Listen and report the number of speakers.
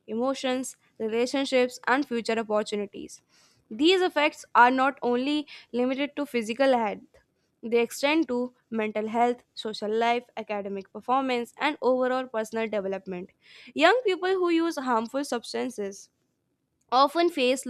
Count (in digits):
1